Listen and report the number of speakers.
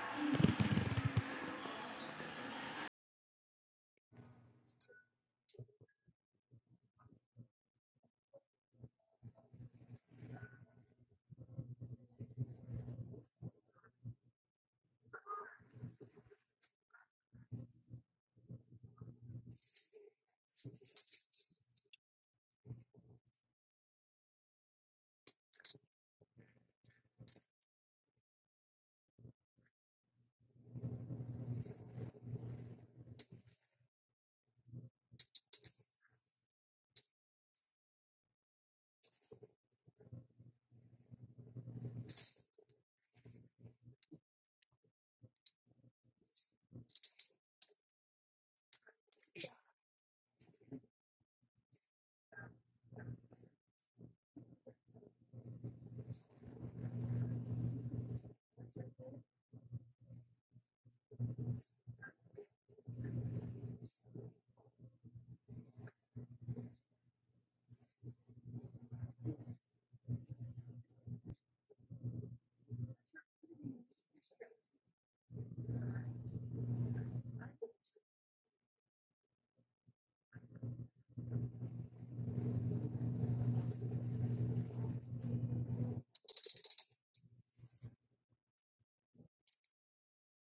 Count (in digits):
0